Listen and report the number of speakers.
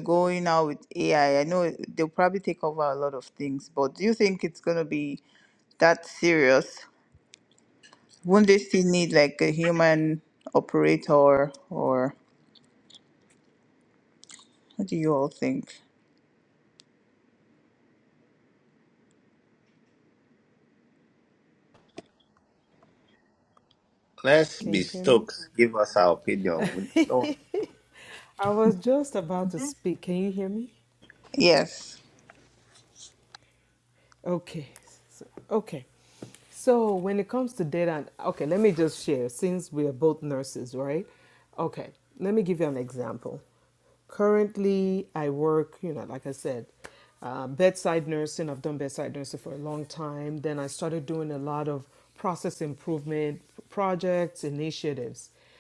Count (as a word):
three